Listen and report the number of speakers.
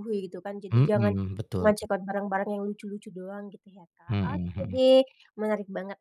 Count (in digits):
2